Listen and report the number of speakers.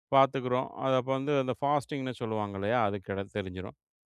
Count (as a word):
one